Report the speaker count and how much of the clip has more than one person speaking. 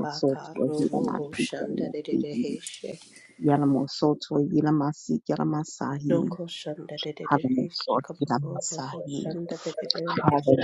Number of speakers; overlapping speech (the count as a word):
two, about 25%